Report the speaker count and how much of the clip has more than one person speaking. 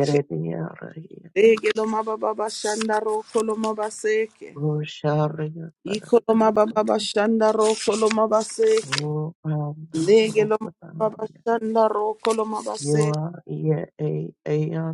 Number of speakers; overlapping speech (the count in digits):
2, about 13%